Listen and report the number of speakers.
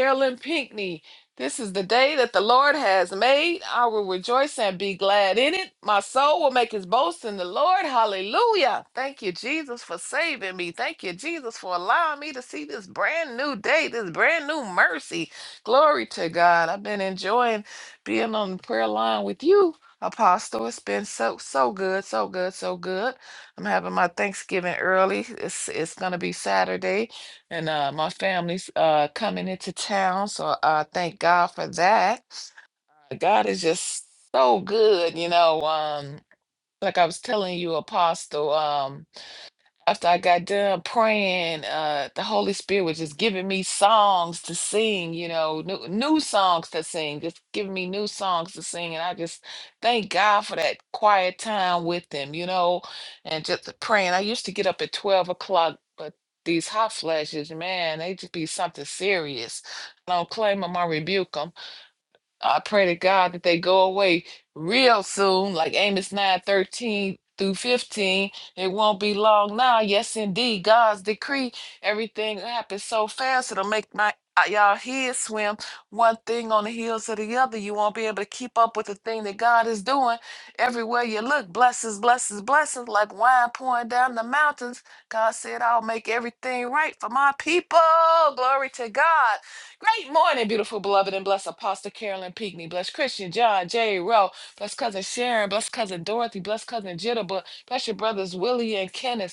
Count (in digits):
1